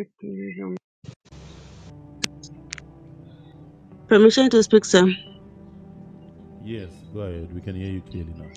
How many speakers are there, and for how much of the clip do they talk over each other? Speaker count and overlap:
2, no overlap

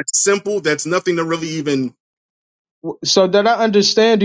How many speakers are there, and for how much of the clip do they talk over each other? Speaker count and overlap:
2, no overlap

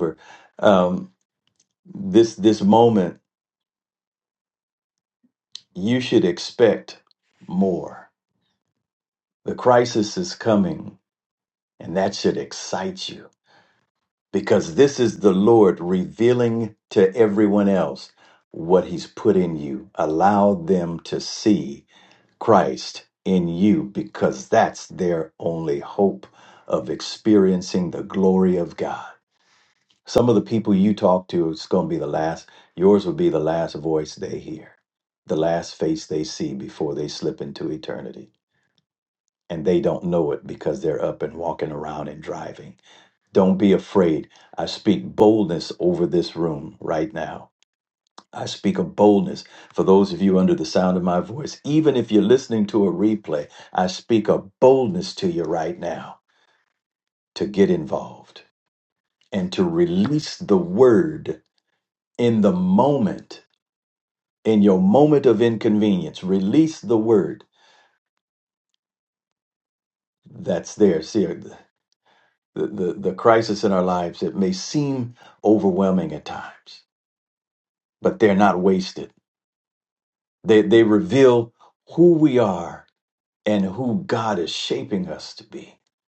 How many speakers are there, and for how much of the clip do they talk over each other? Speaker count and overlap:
1, no overlap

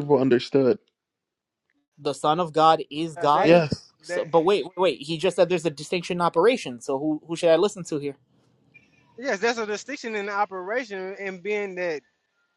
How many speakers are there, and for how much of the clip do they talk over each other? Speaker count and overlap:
3, about 5%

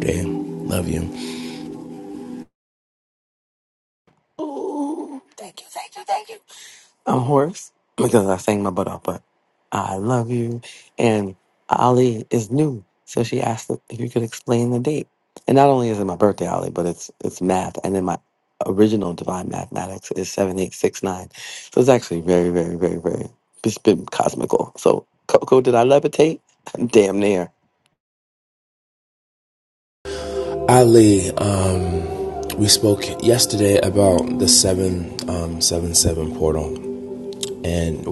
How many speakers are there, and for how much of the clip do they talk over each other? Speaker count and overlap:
2, no overlap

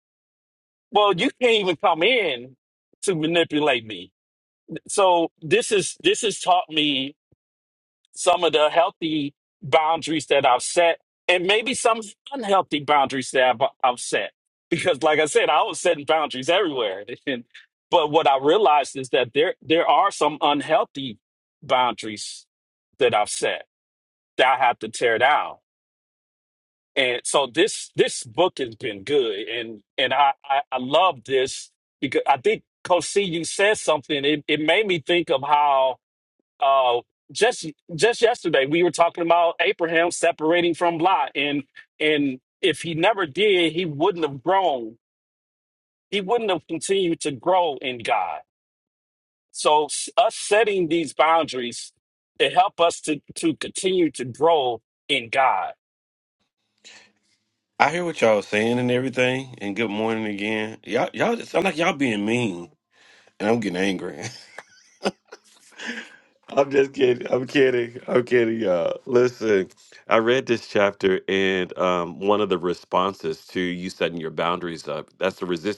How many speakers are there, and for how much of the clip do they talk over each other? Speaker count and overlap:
2, no overlap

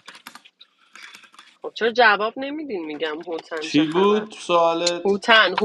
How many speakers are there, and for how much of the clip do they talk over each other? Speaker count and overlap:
2, about 13%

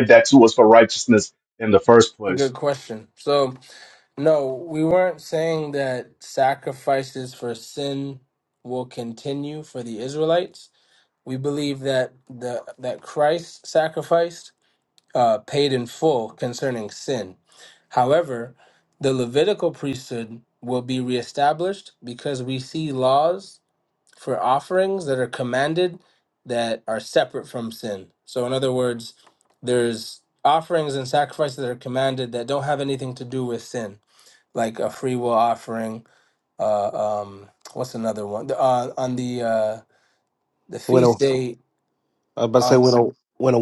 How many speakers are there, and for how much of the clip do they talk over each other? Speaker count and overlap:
3, about 1%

